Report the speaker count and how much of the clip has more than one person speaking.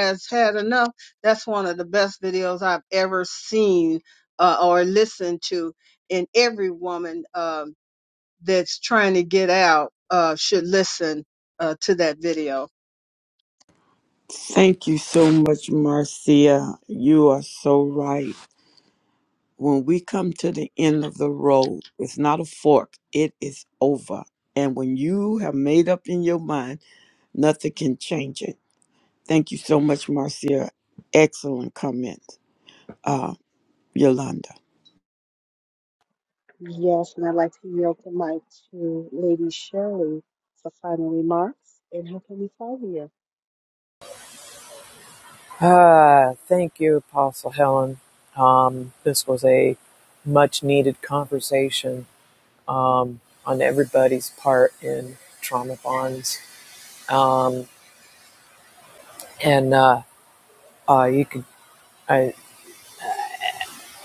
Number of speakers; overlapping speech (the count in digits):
4, no overlap